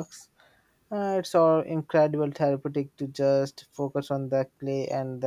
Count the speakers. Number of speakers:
1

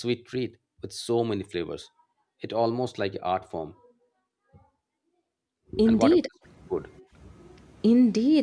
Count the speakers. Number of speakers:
2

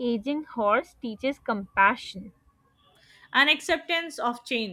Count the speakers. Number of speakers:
2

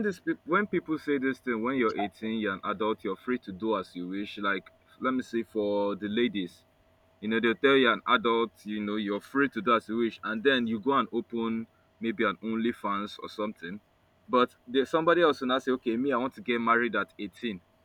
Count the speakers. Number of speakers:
1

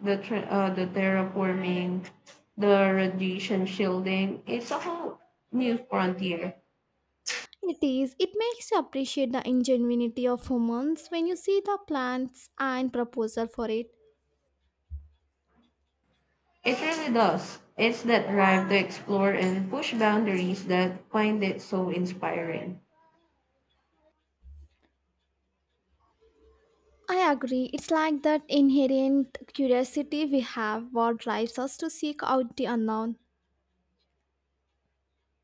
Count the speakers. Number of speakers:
2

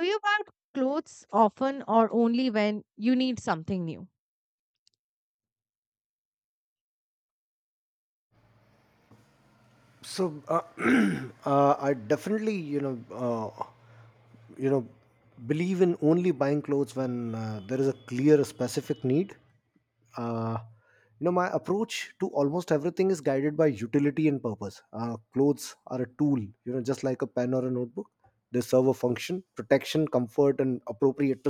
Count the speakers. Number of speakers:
2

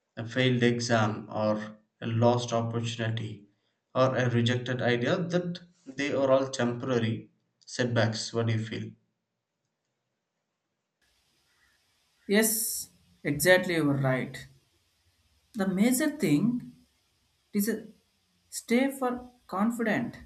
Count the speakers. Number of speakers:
2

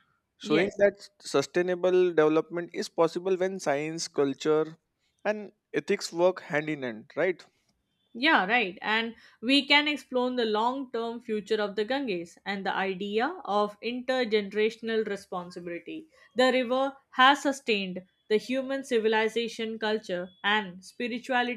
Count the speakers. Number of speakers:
2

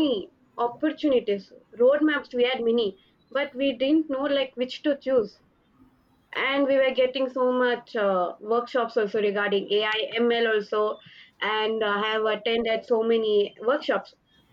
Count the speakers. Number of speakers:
1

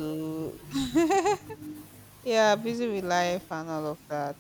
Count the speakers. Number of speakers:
1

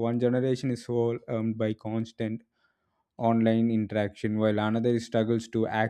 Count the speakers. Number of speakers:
1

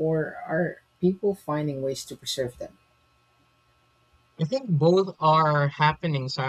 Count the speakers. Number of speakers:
2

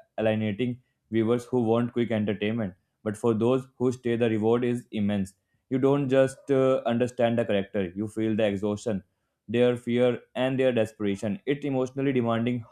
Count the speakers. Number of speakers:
1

